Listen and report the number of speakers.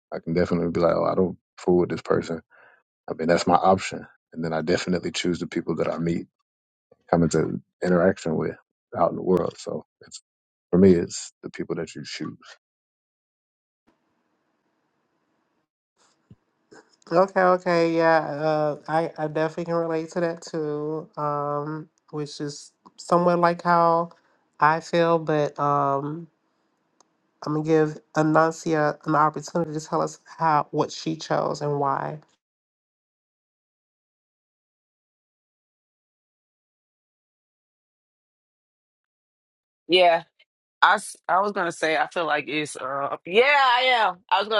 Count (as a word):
three